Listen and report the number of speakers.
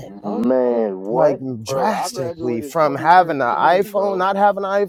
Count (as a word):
two